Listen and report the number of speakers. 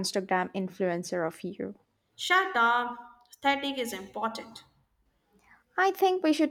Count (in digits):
2